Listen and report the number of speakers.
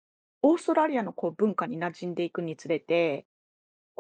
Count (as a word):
one